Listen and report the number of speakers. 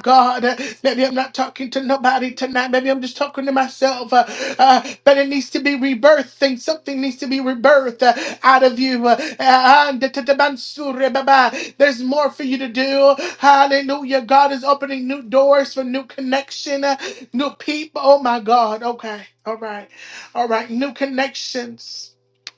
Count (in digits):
1